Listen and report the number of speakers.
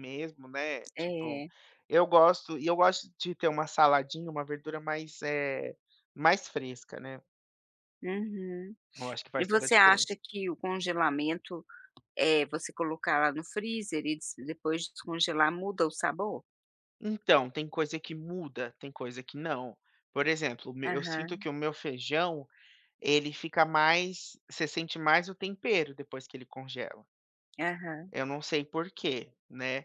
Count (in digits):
2